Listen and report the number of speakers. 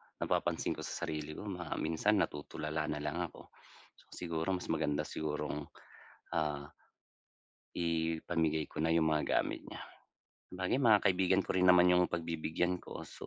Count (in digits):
1